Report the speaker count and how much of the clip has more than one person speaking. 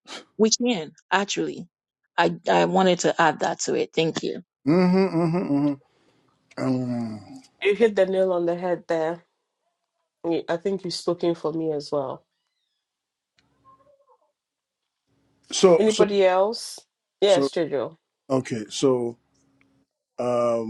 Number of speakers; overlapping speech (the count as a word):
three, about 2%